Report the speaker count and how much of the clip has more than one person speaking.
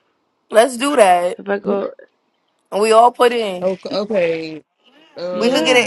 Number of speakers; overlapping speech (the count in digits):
3, about 11%